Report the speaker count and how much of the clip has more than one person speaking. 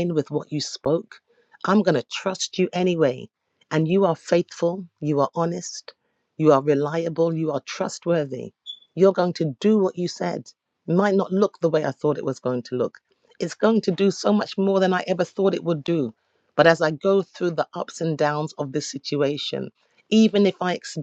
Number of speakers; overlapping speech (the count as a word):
one, no overlap